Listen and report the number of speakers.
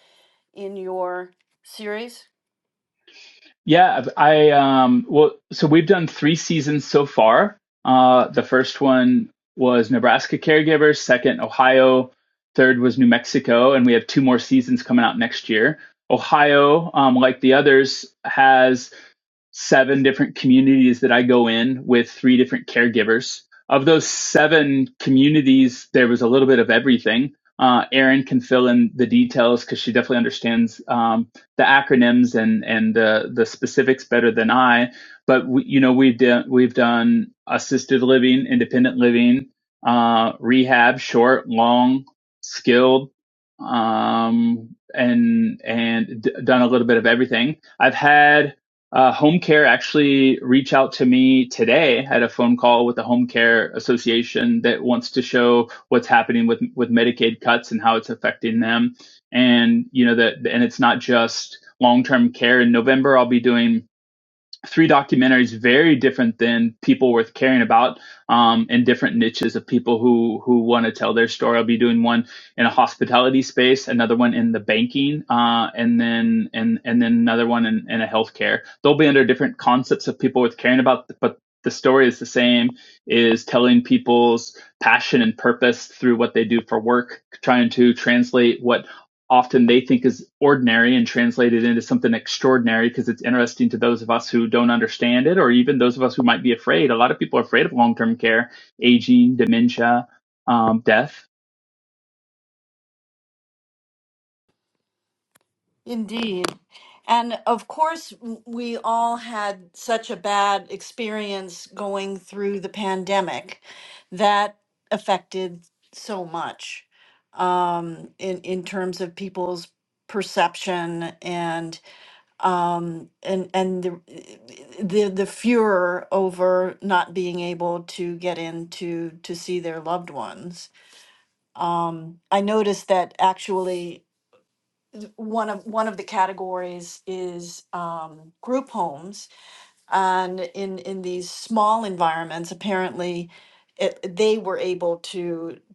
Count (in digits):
2